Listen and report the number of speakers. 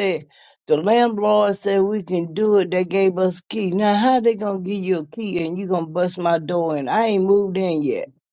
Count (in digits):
1